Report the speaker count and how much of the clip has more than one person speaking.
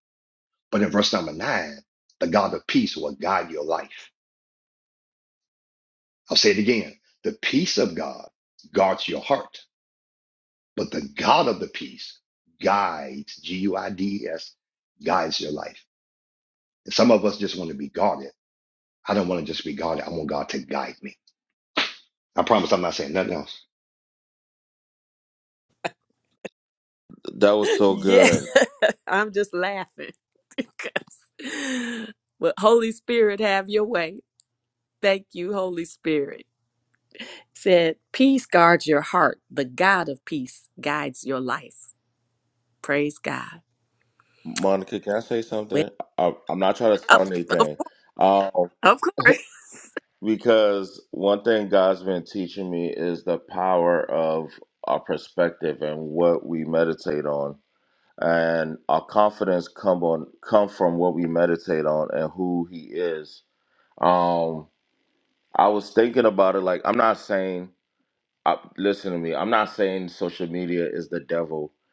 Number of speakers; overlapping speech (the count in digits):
3, about 1%